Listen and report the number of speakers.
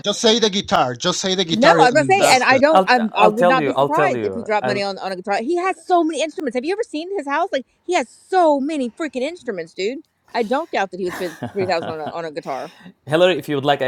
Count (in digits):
3